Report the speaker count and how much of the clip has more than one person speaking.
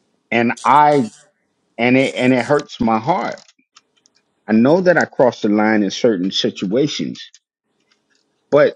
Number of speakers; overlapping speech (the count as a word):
one, no overlap